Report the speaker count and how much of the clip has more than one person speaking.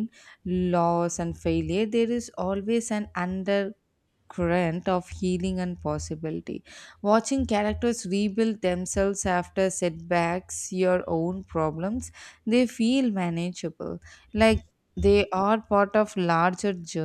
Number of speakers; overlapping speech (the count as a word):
one, no overlap